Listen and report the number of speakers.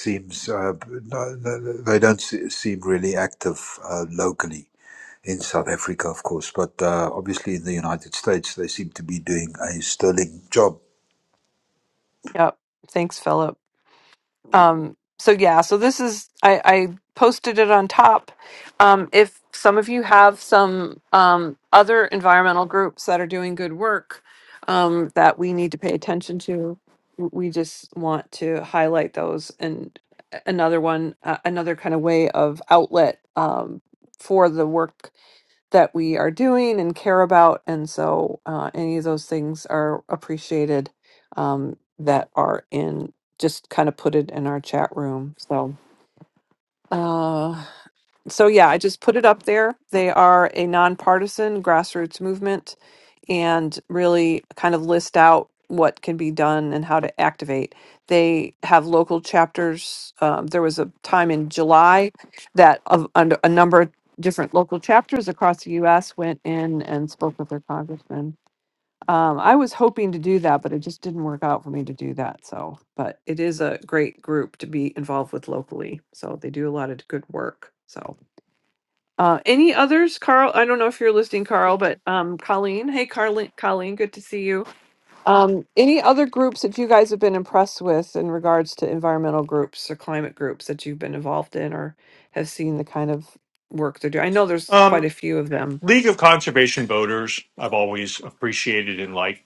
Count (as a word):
three